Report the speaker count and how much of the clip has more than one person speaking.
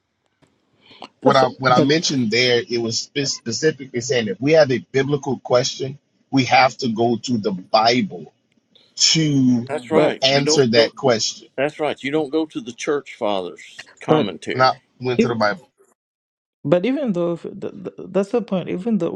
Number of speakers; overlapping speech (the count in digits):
3, about 12%